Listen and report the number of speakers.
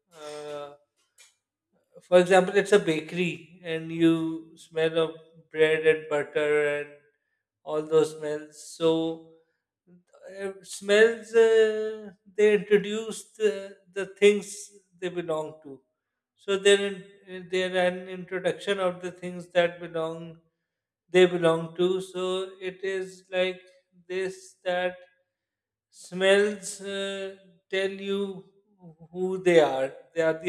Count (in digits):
1